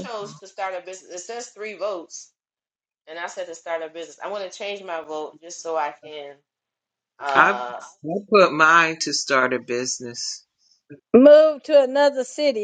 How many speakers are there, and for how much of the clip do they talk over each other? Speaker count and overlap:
three, about 3%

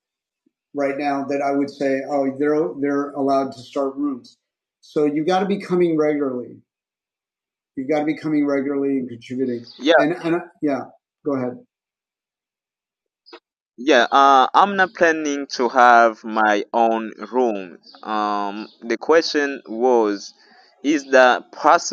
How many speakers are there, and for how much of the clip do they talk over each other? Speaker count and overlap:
two, under 1%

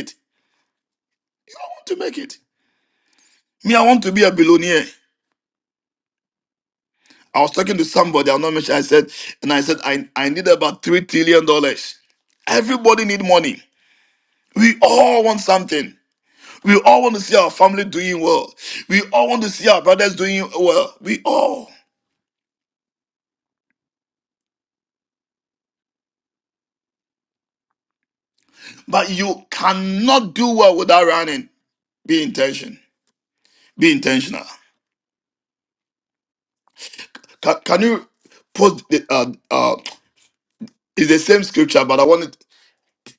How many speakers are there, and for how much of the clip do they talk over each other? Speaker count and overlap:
one, no overlap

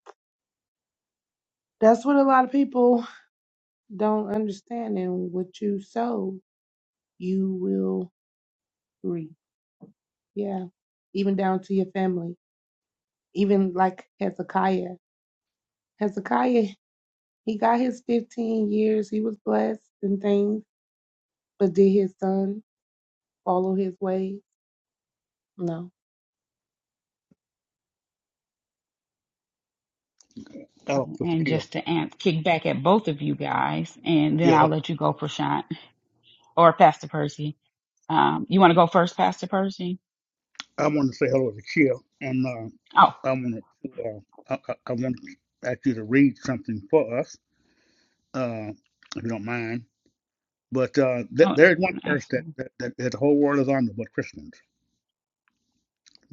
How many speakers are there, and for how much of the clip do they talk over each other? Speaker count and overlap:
three, about 3%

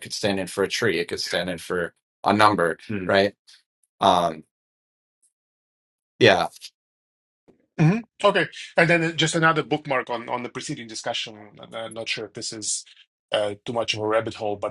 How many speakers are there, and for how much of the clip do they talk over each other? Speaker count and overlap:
two, no overlap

